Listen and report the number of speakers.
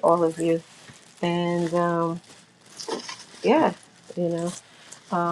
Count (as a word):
one